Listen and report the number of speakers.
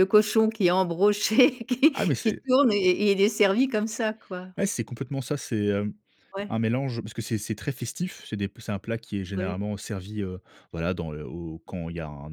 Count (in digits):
2